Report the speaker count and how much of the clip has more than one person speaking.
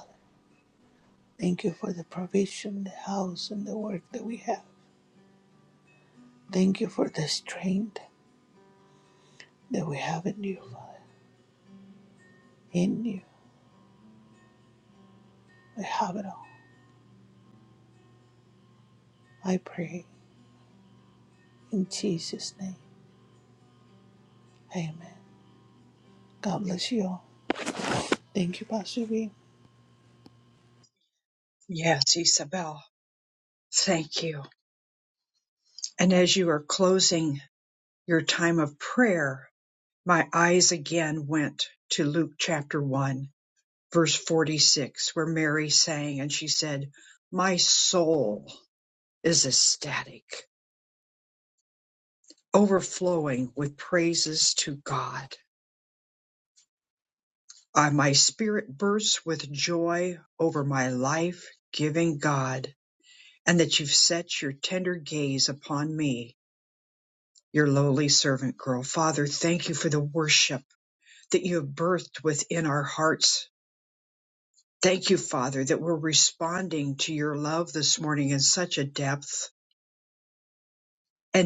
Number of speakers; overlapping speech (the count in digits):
2, no overlap